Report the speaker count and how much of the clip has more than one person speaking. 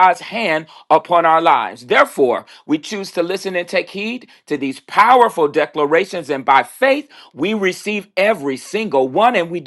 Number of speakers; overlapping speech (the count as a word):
one, no overlap